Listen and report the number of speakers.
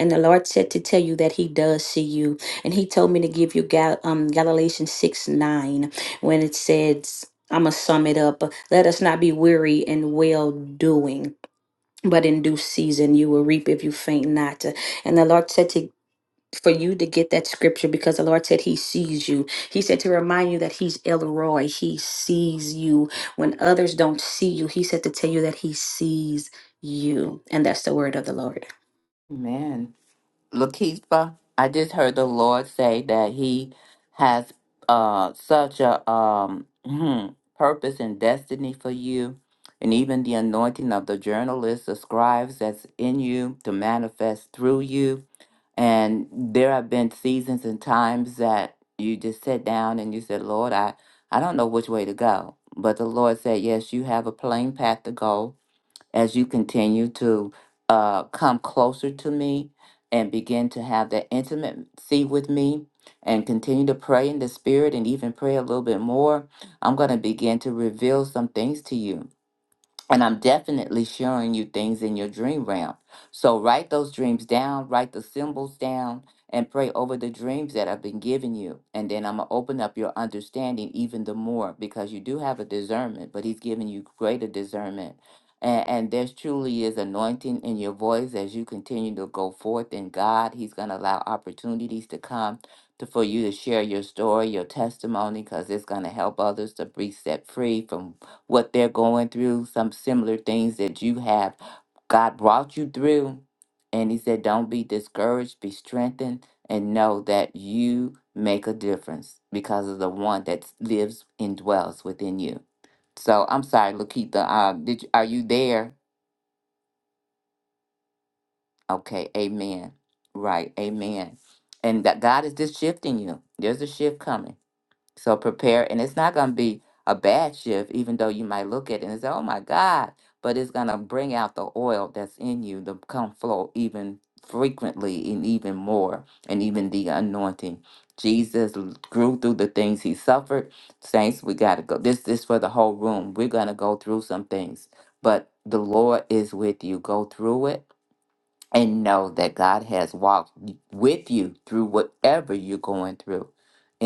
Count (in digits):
2